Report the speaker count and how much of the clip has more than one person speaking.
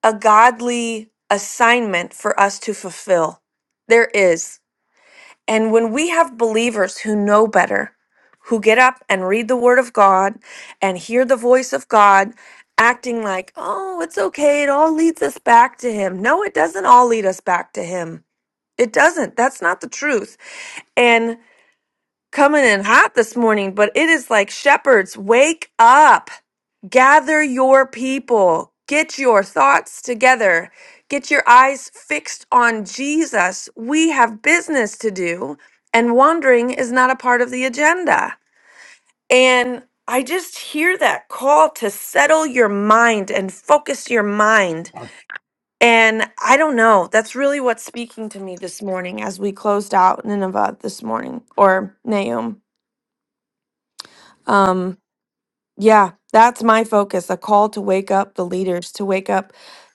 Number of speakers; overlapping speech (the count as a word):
one, no overlap